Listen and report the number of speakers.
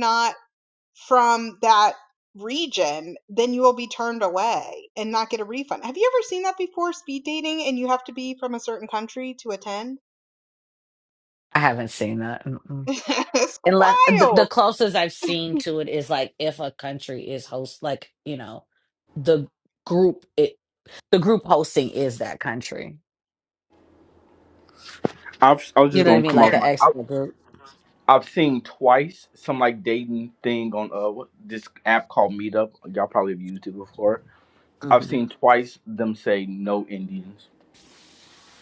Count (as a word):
three